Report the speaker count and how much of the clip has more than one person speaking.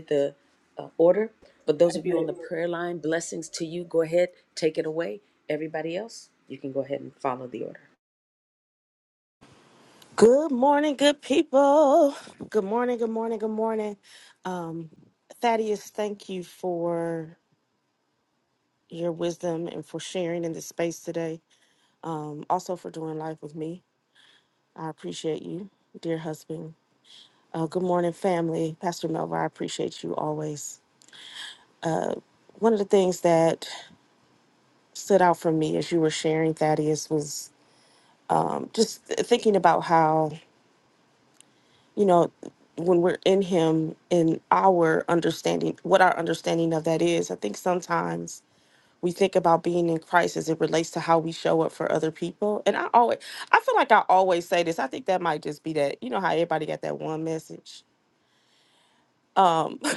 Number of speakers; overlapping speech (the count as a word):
two, no overlap